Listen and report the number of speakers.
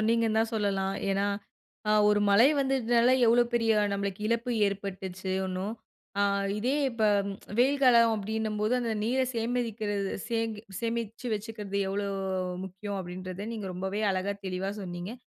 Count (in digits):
1